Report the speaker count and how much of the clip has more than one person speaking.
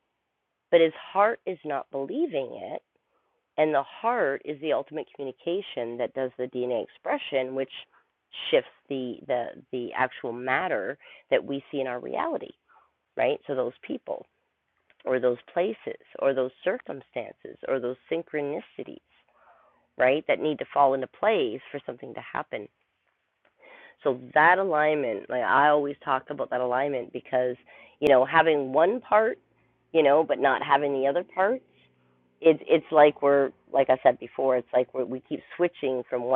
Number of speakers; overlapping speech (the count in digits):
1, no overlap